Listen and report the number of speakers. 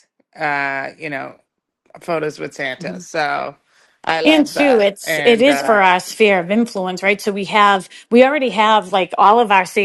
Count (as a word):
two